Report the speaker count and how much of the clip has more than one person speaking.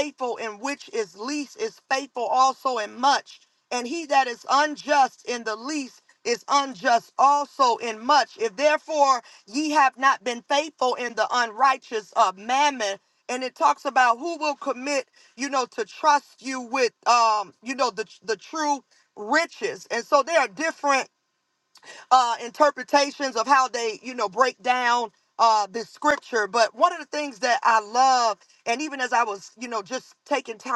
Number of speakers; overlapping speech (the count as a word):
one, no overlap